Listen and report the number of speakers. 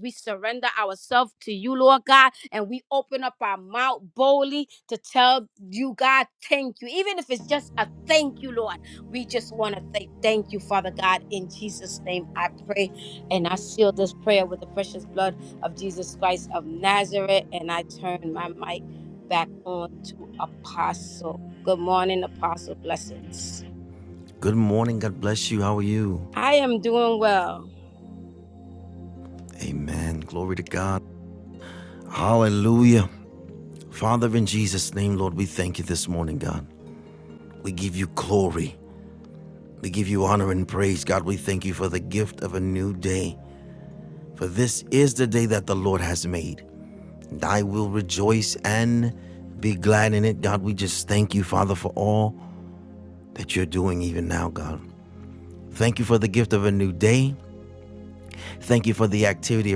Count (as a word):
two